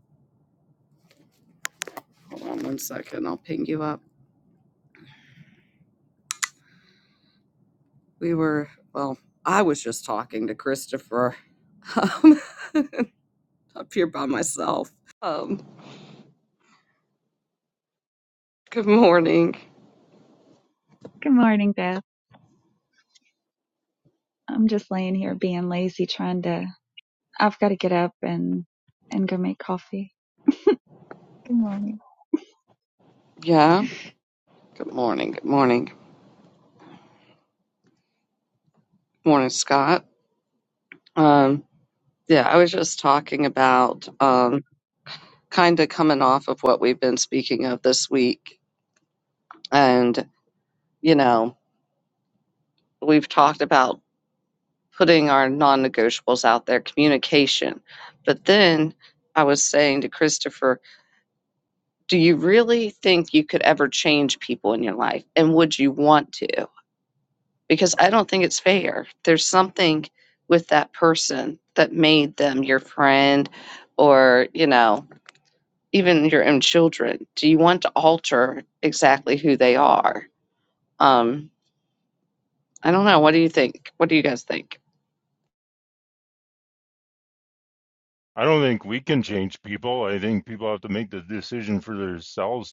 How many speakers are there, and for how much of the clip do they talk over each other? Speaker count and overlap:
three, no overlap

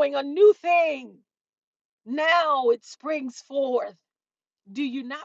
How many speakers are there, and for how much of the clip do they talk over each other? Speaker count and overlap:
one, no overlap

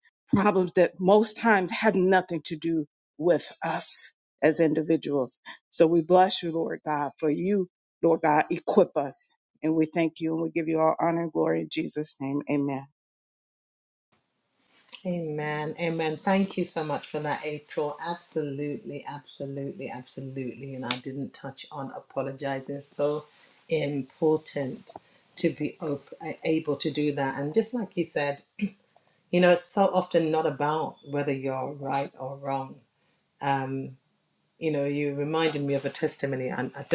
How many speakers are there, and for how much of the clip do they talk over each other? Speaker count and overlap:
two, no overlap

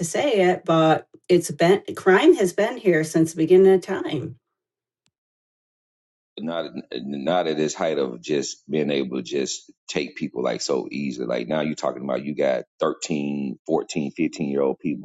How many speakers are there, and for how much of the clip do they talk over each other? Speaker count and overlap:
two, no overlap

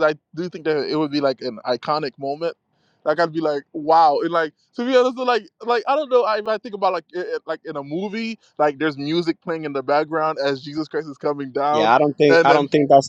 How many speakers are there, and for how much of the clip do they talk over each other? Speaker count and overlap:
two, about 4%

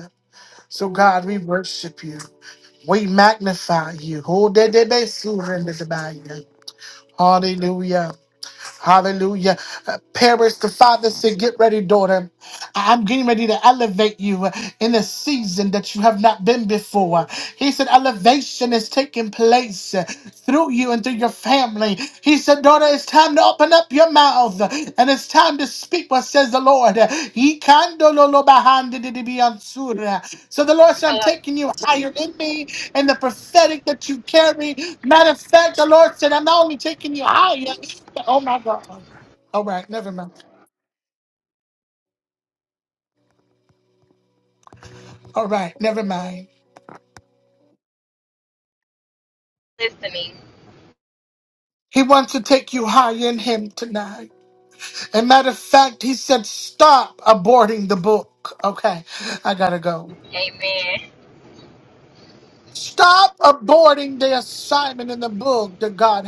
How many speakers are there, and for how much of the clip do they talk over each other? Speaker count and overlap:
two, under 1%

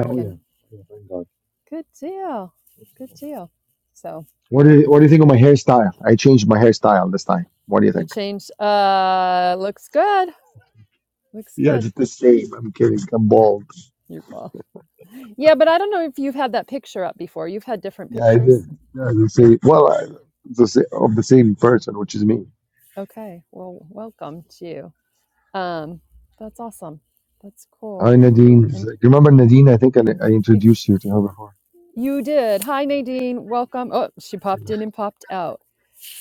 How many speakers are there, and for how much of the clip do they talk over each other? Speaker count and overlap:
two, about 4%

